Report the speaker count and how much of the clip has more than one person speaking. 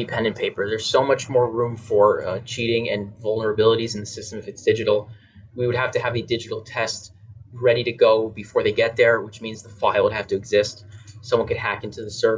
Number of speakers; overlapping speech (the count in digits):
1, no overlap